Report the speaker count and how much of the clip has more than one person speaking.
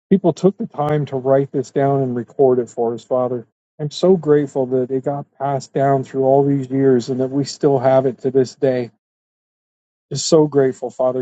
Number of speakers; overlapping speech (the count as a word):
one, no overlap